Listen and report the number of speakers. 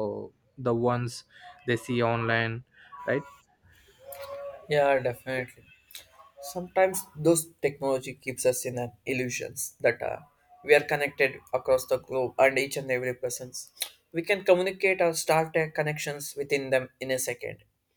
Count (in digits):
2